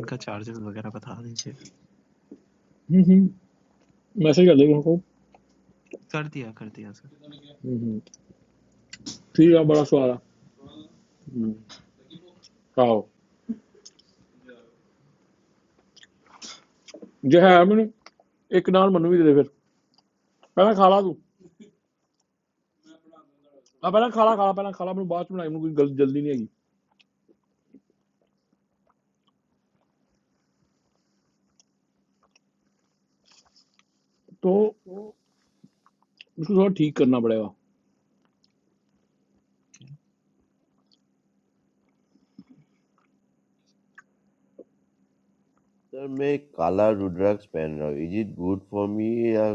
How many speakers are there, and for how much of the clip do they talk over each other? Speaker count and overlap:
3, no overlap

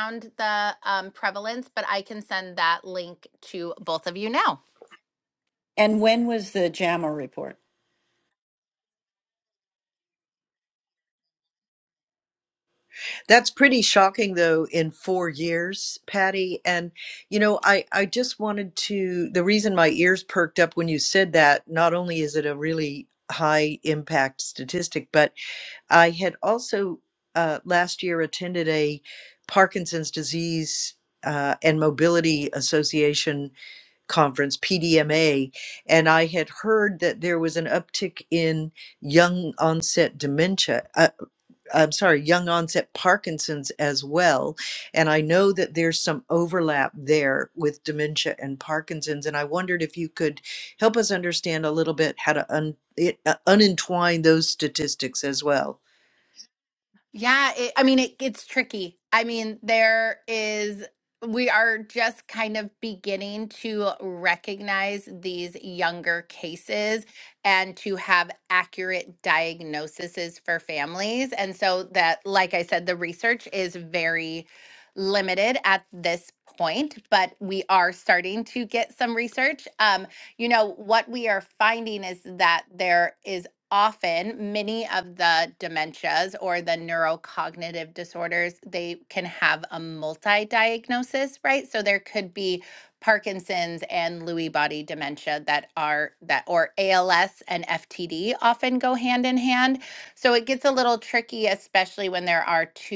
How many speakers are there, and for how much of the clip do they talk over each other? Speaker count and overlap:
3, no overlap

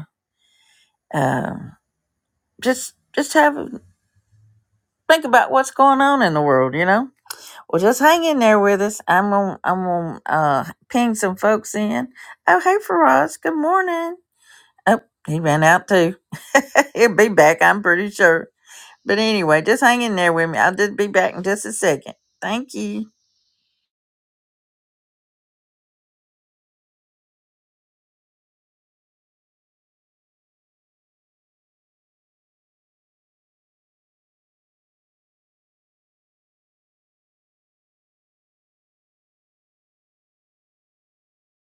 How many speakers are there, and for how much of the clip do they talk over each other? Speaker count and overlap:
1, no overlap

